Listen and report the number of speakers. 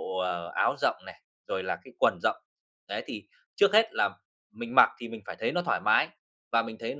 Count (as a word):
one